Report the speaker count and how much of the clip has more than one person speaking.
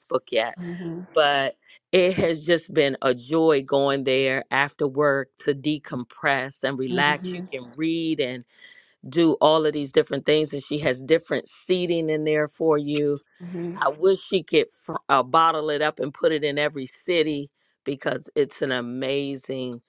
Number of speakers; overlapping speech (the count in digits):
2, about 3%